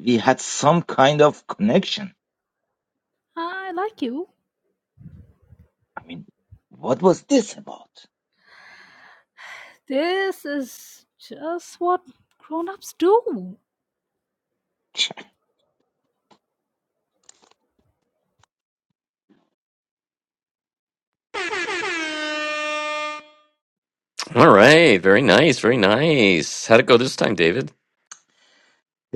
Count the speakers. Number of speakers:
three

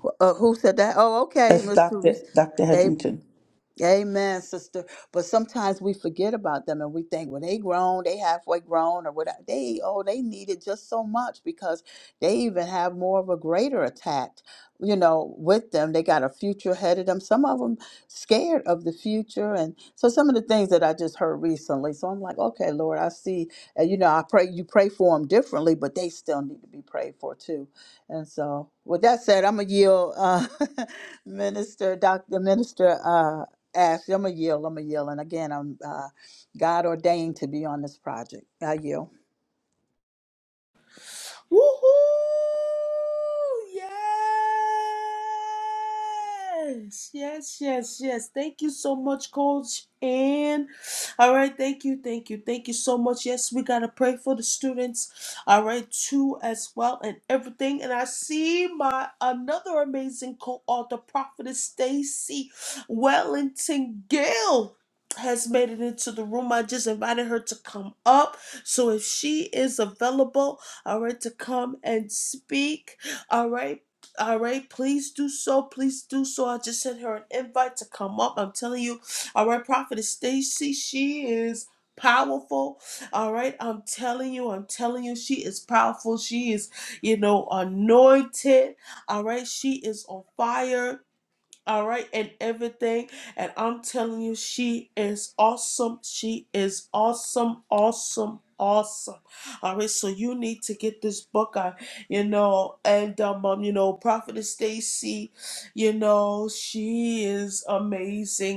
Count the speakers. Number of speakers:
three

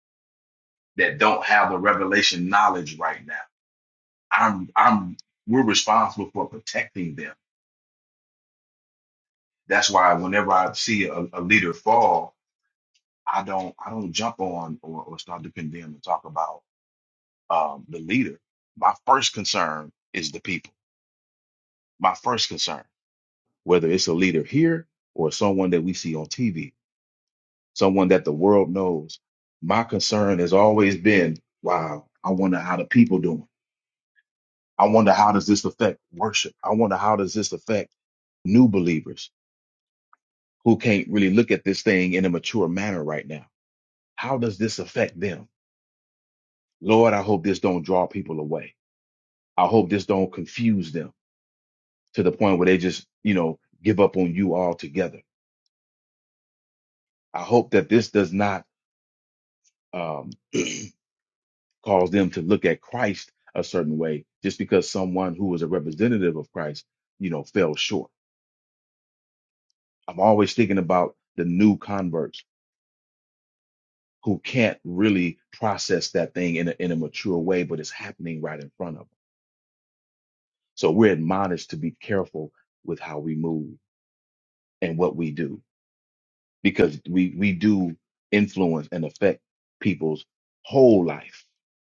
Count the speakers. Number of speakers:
one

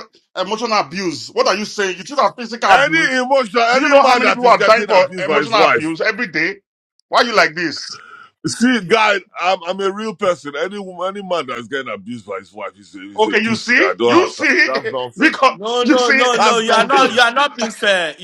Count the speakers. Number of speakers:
three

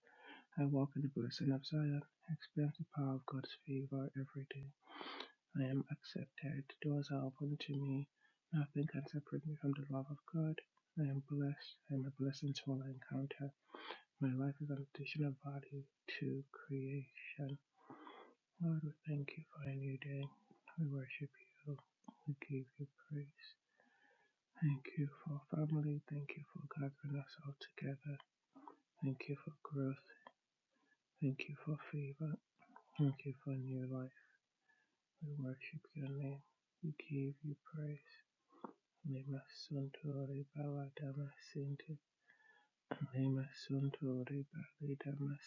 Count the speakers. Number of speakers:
one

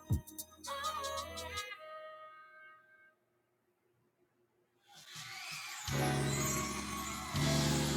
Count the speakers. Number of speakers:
zero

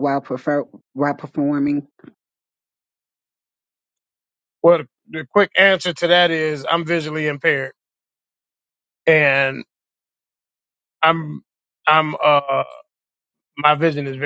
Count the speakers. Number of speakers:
two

